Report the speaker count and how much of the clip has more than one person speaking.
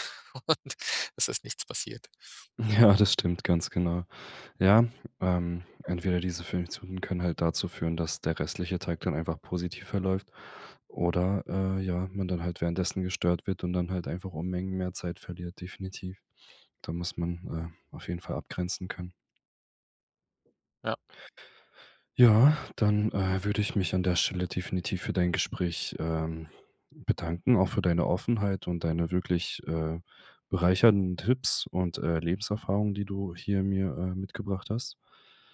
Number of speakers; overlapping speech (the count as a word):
two, no overlap